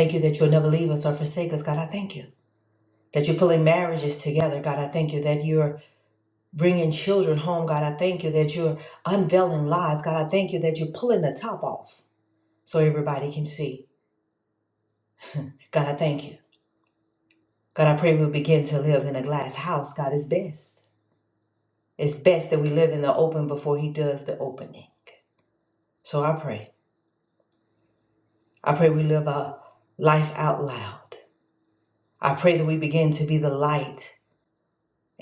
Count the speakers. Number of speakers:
one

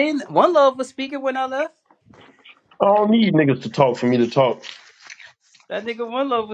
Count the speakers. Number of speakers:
two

